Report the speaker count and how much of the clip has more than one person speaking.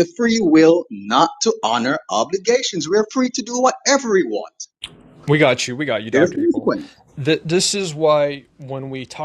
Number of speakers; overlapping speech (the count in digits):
2, about 6%